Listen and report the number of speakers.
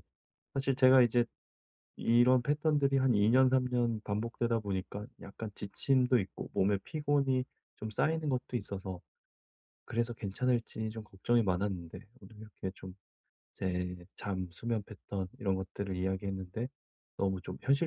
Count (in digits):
1